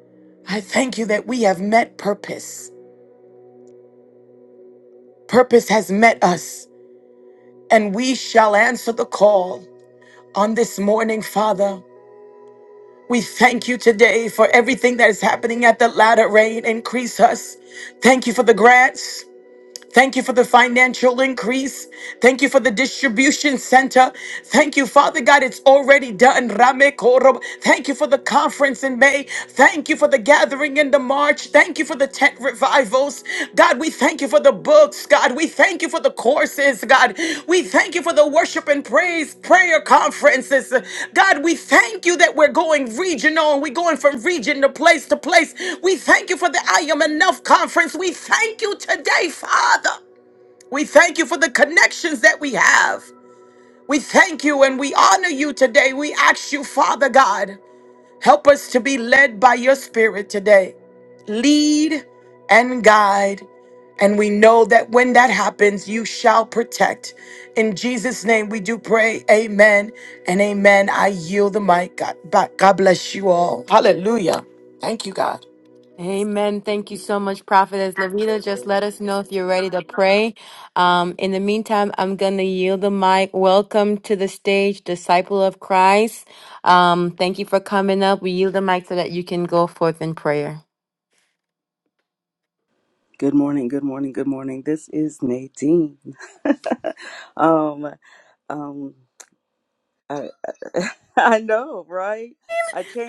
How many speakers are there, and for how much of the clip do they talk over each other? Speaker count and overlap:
three, no overlap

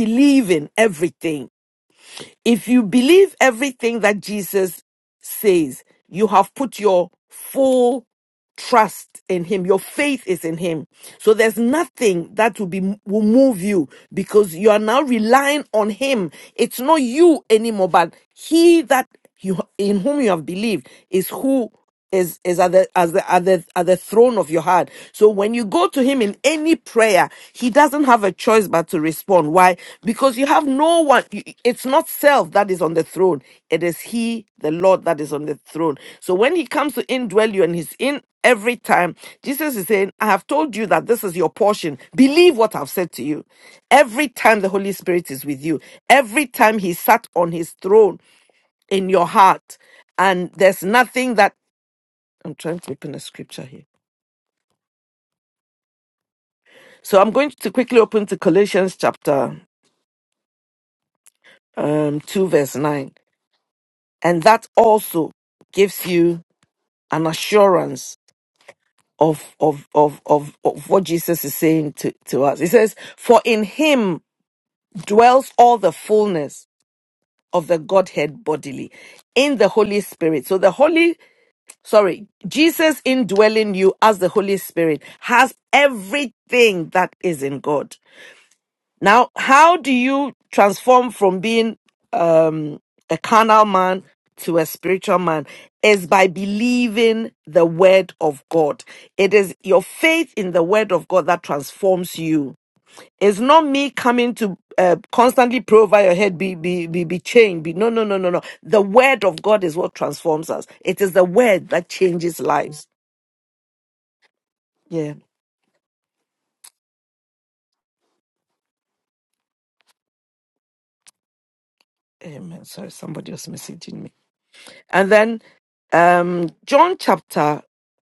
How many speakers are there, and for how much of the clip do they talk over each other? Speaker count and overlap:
one, no overlap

